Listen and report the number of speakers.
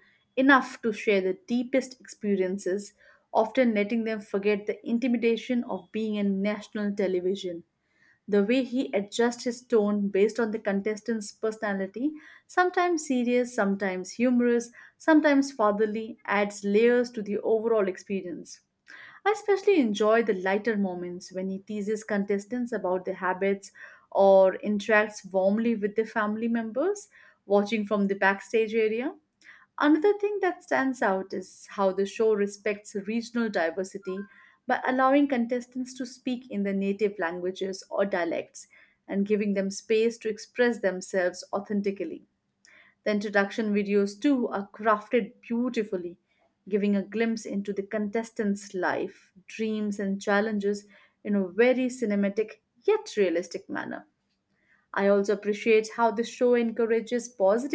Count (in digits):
1